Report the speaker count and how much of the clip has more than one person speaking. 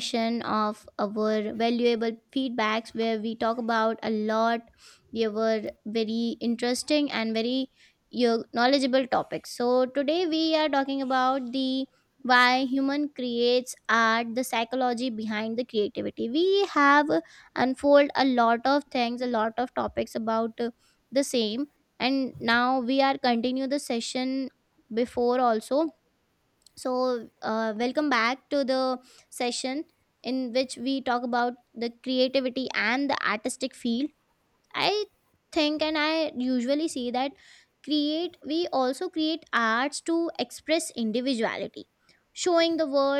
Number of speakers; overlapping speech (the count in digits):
1, no overlap